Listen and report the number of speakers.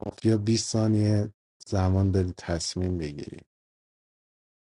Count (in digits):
1